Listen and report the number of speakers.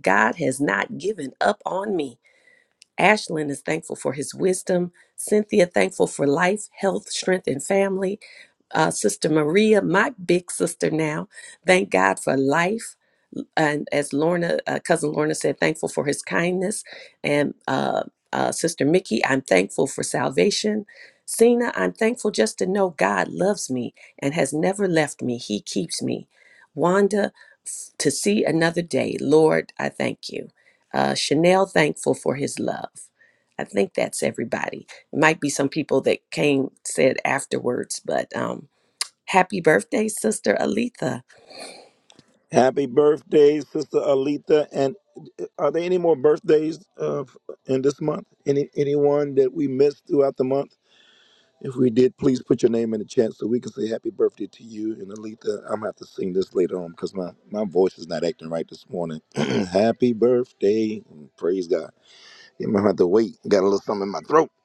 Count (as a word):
two